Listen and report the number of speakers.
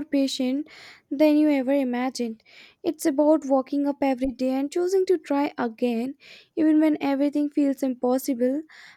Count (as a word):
one